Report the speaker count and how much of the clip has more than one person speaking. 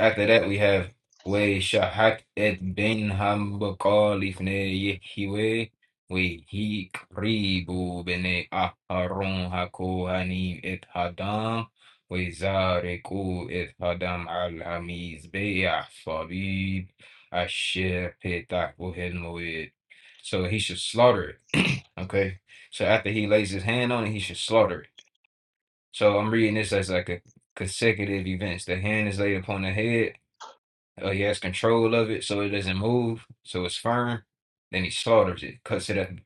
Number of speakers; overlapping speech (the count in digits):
1, no overlap